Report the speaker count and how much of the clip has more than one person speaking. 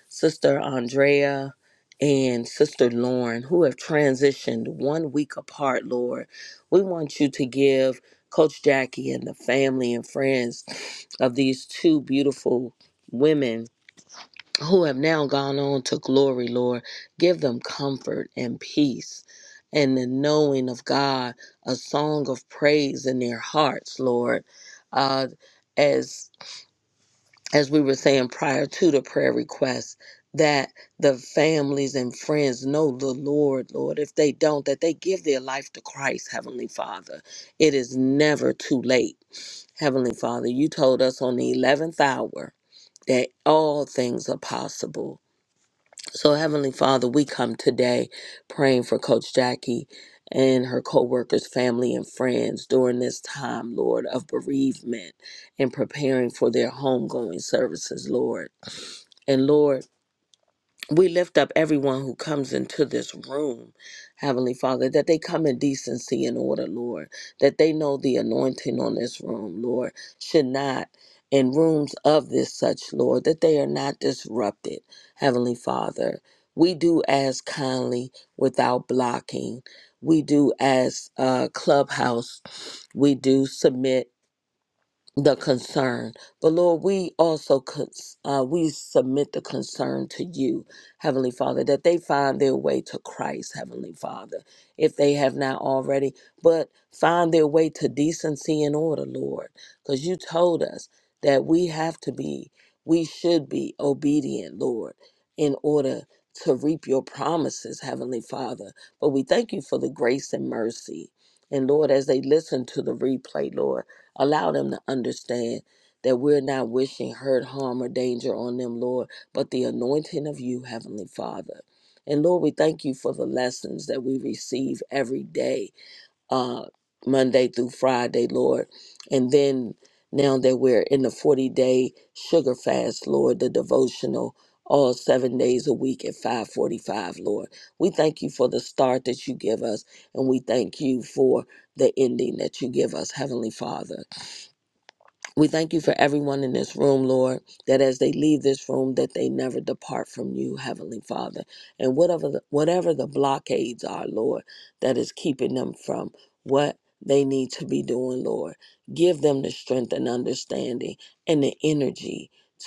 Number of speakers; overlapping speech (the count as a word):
one, no overlap